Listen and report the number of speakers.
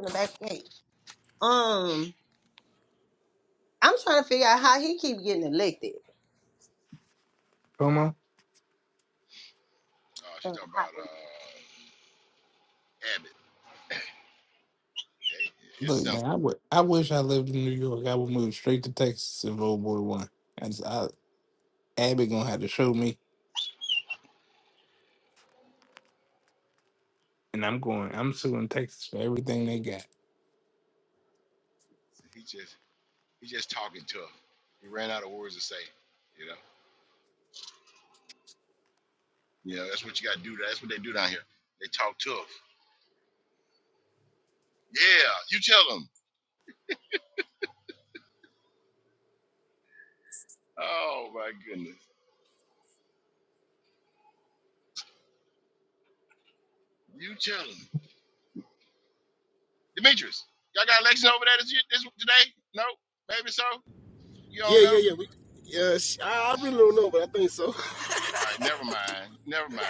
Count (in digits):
4